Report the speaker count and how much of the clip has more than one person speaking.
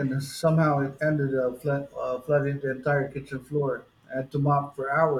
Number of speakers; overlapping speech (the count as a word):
one, no overlap